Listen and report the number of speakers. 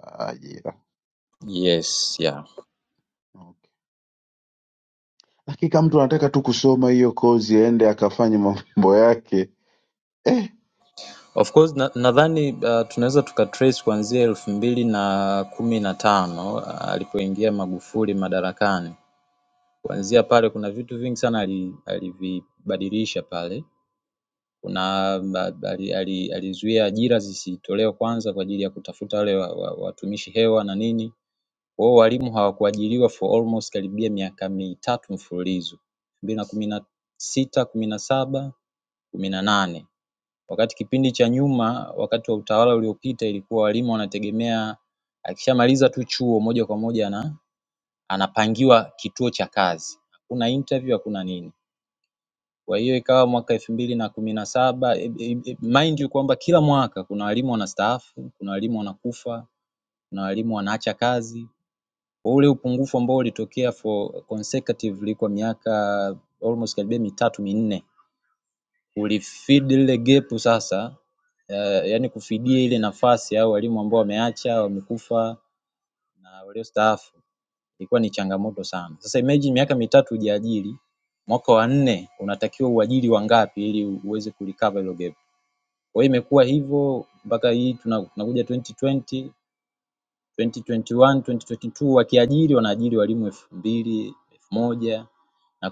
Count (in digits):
2